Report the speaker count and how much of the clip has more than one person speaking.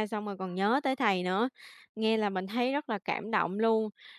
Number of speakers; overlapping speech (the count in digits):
1, no overlap